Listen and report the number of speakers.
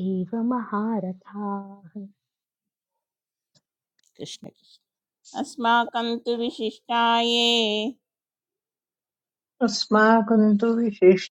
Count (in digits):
3